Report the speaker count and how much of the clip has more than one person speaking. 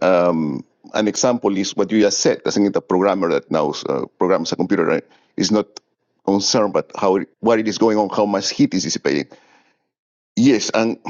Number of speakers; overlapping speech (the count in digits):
1, no overlap